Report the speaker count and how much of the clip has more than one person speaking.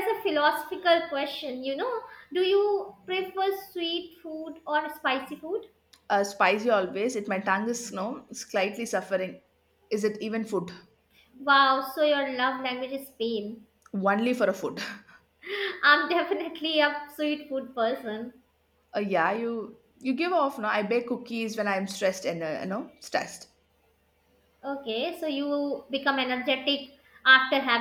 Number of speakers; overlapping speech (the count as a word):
two, no overlap